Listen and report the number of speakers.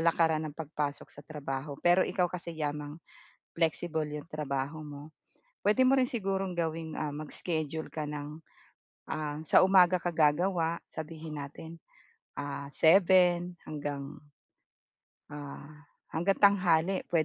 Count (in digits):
1